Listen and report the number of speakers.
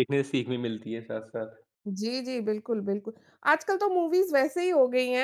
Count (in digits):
2